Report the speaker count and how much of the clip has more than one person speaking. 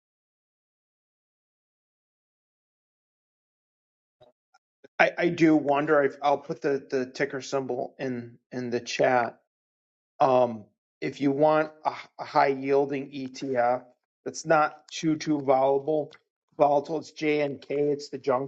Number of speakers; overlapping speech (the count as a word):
one, no overlap